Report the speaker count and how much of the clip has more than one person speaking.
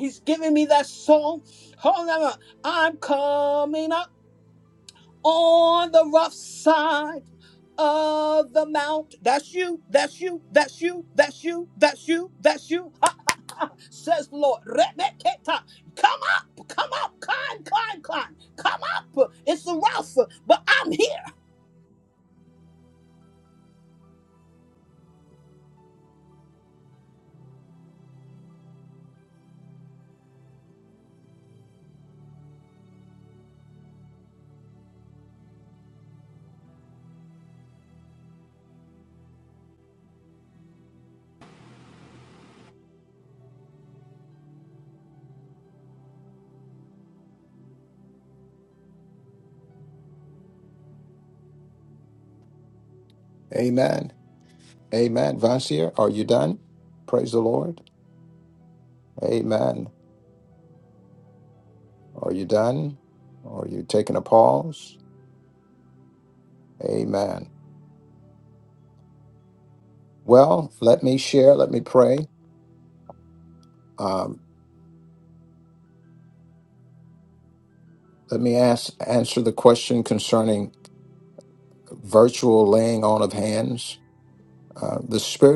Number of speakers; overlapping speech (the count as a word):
two, no overlap